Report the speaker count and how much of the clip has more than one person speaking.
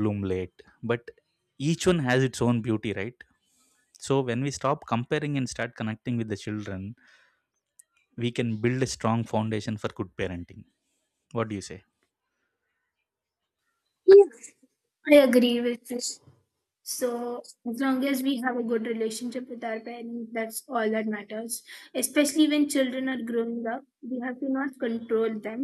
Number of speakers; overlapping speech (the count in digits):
2, no overlap